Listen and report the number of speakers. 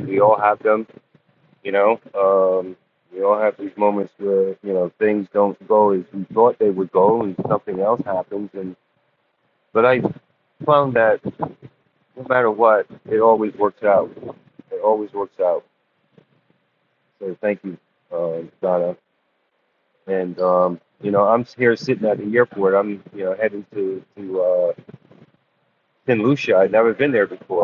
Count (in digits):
1